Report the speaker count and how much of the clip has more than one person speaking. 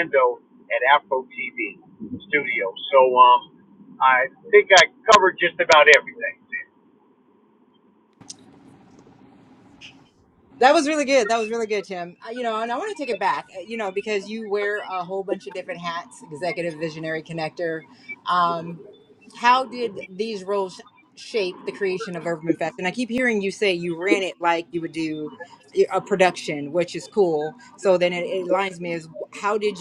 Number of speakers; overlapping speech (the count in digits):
2, no overlap